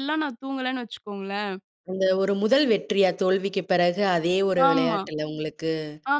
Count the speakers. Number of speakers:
two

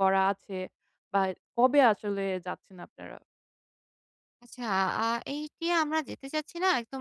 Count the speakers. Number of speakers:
two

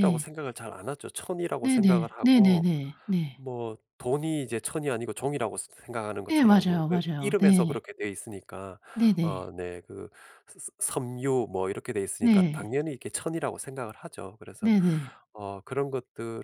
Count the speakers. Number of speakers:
two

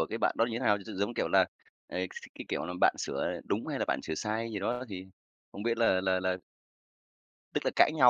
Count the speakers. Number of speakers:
one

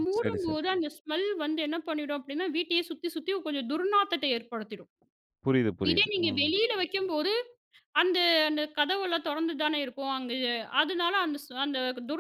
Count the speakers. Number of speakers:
two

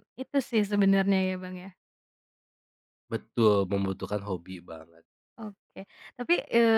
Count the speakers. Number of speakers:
two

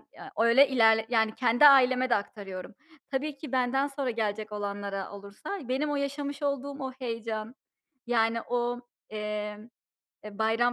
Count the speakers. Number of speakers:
one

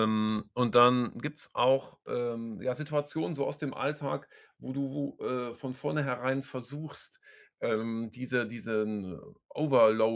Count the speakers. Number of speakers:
one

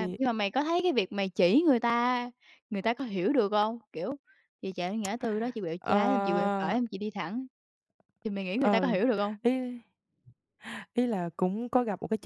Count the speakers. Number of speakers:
two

